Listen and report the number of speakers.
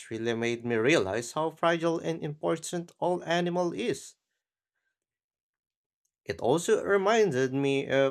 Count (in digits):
1